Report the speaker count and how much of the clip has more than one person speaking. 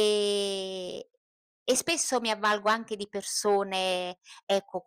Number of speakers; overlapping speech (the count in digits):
1, no overlap